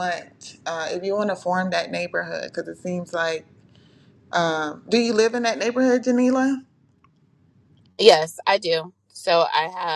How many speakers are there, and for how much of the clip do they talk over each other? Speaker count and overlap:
two, no overlap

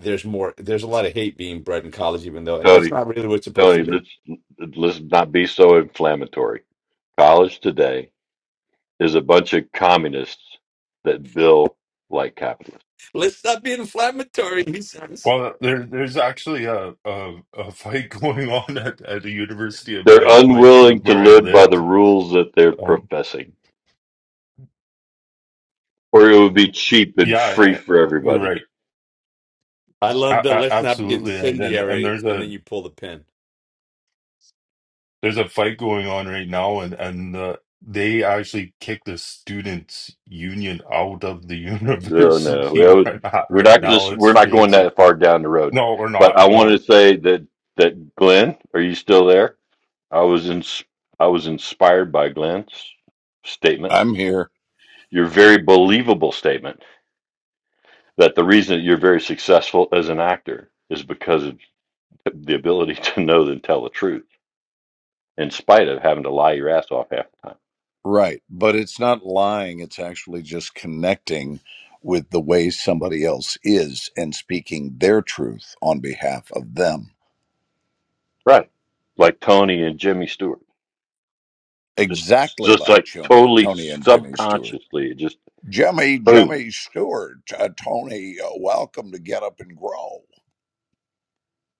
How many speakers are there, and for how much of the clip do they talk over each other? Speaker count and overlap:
four, about 12%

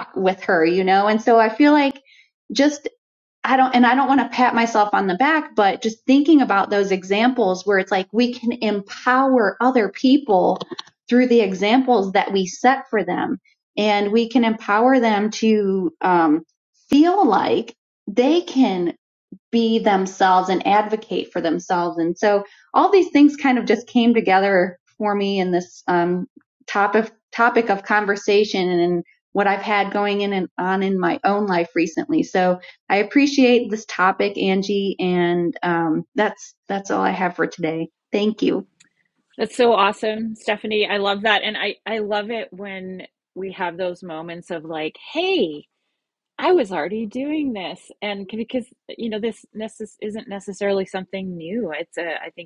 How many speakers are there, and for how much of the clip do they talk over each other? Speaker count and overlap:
two, no overlap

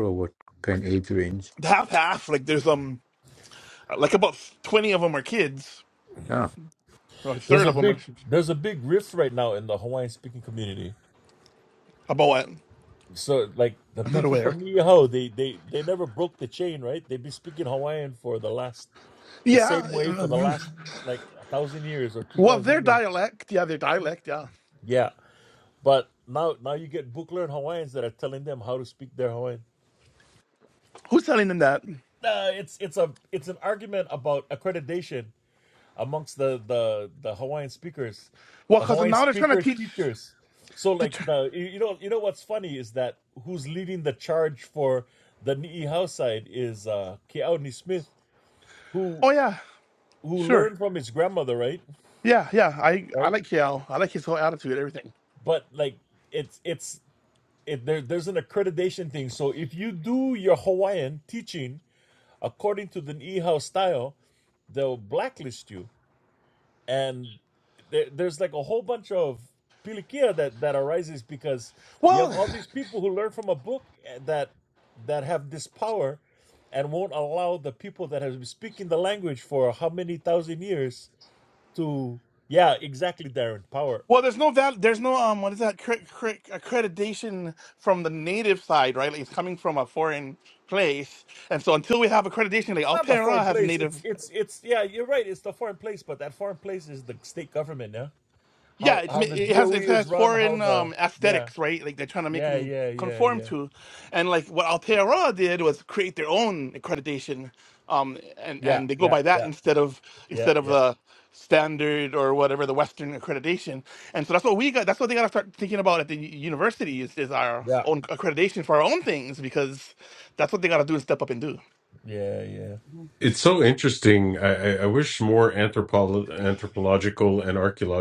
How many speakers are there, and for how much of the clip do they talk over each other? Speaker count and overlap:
four, about 8%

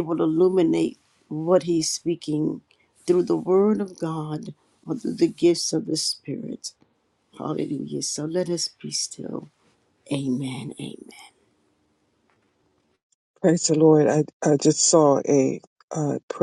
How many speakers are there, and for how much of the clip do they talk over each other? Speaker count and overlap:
two, no overlap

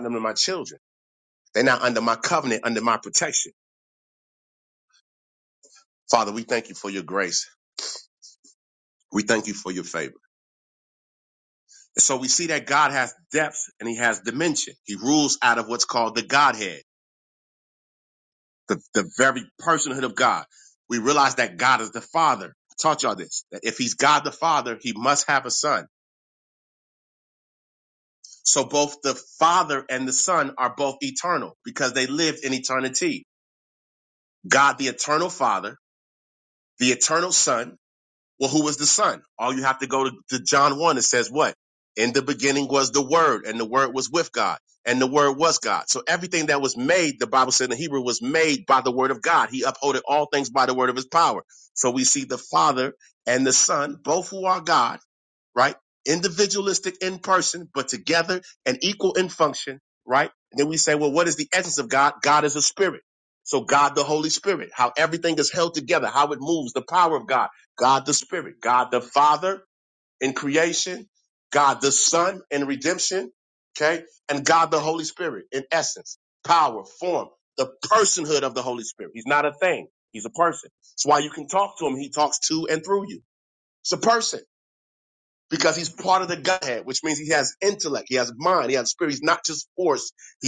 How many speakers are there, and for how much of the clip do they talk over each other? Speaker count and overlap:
one, no overlap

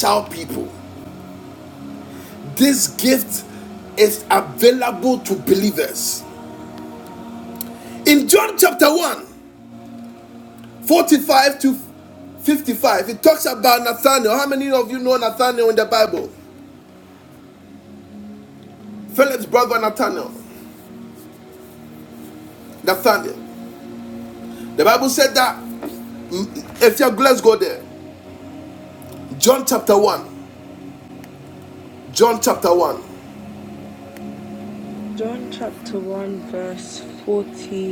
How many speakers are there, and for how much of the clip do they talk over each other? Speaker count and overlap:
two, no overlap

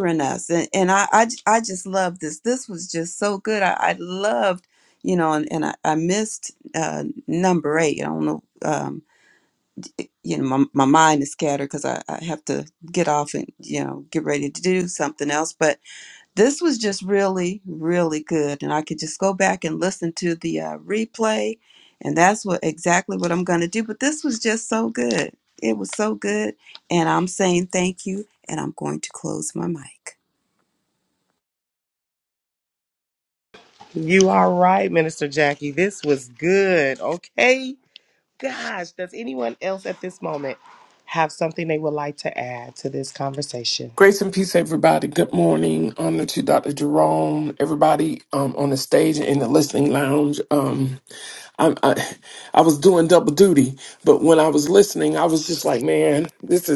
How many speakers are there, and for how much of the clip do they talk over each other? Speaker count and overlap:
three, no overlap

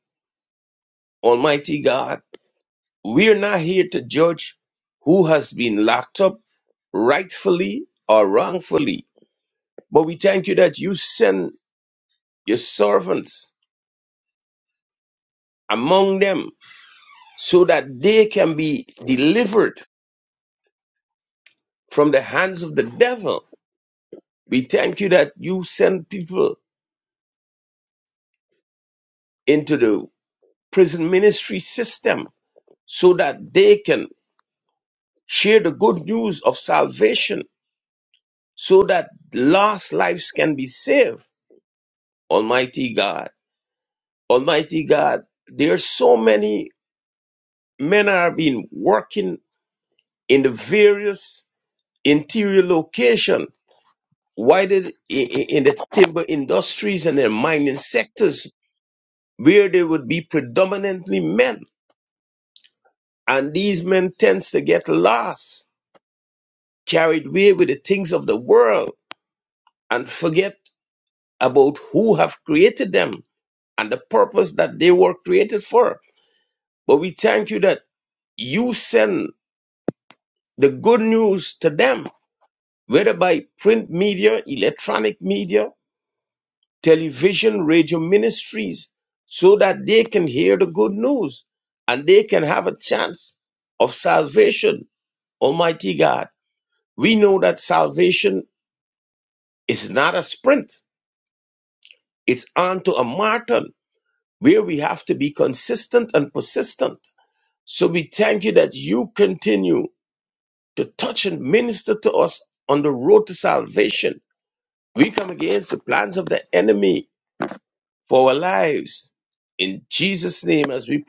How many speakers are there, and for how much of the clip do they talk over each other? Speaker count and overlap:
one, no overlap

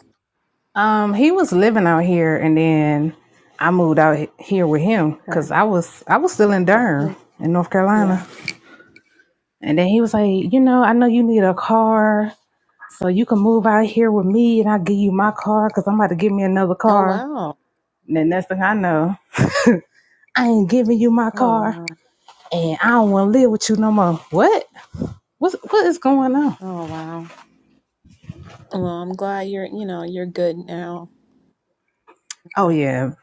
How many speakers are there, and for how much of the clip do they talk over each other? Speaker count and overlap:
two, about 5%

